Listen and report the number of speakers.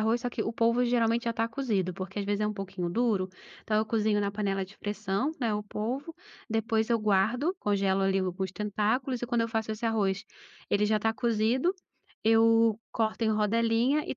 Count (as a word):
one